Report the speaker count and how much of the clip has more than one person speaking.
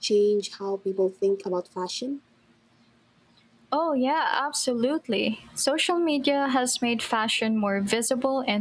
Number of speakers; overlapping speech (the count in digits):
2, no overlap